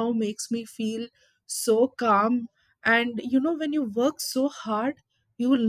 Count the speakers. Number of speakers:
1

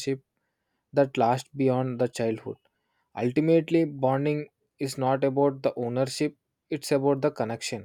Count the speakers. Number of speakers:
1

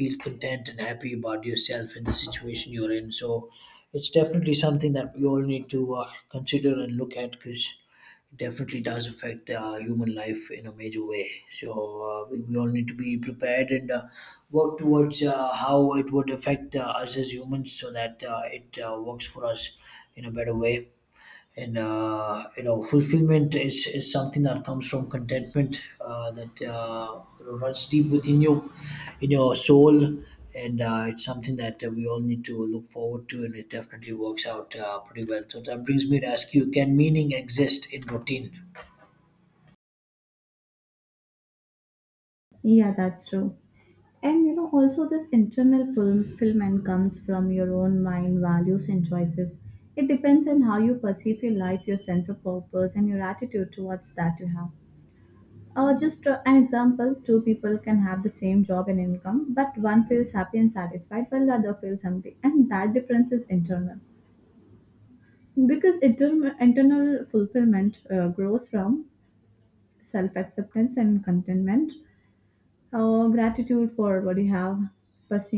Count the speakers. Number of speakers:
2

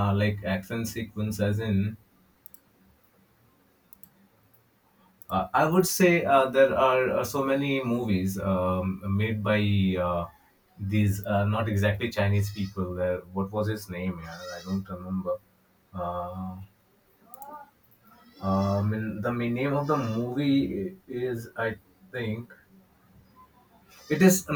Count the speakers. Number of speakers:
1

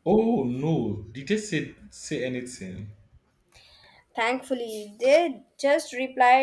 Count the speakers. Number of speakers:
2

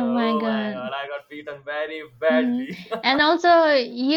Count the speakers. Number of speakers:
2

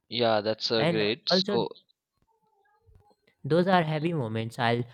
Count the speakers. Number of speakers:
2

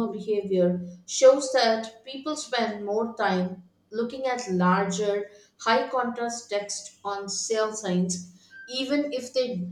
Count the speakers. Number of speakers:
1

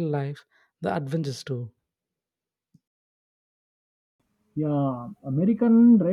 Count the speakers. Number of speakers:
2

